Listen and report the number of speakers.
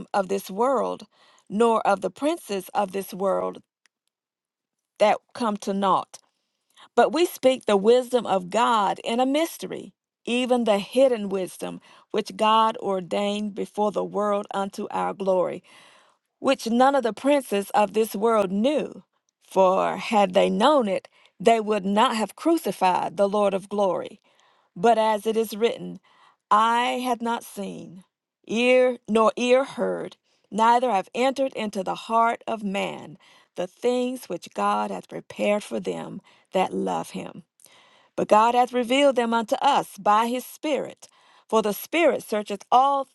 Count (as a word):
one